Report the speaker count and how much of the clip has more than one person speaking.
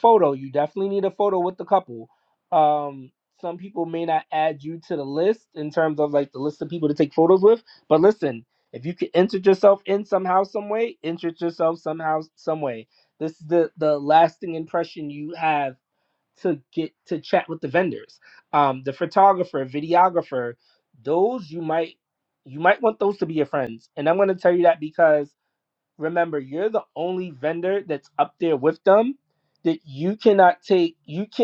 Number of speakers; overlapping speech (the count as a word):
one, no overlap